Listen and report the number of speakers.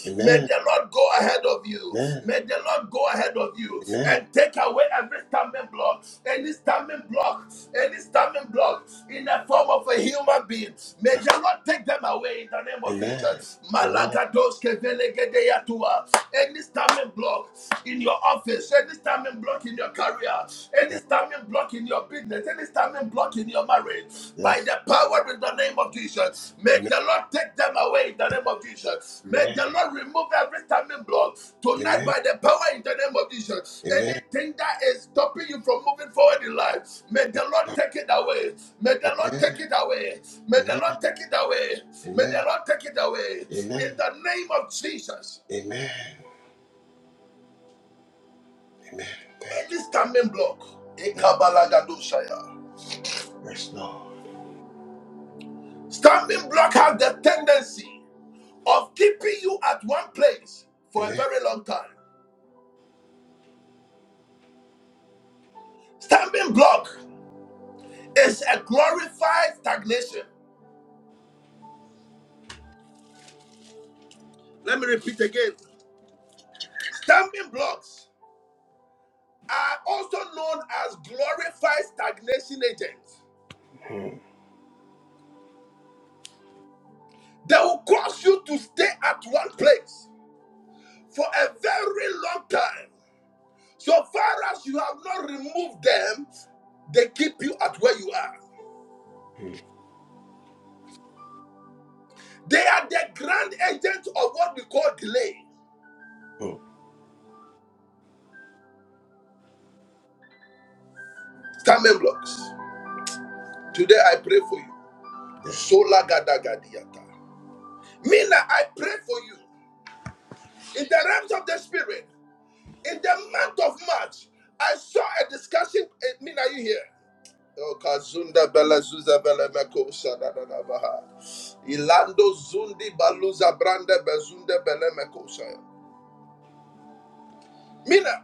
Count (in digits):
2